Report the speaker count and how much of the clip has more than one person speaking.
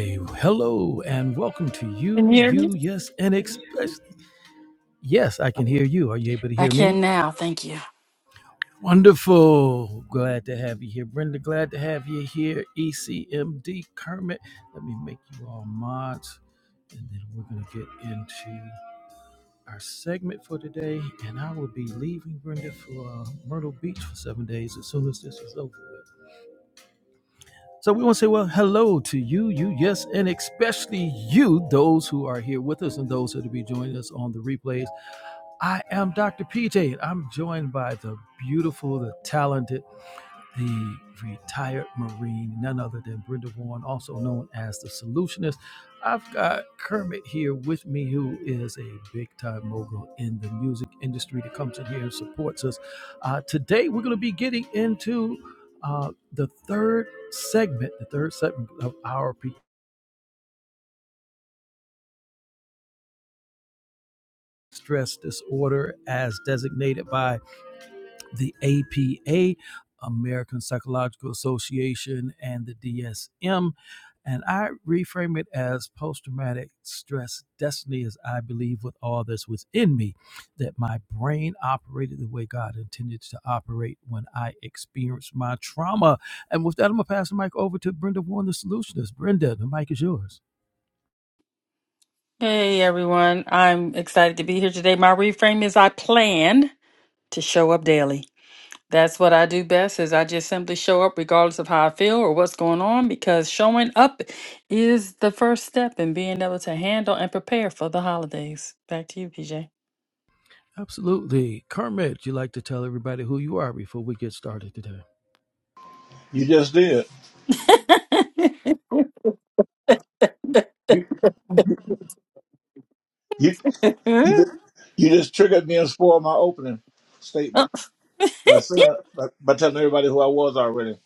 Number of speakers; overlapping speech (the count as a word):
three, about 1%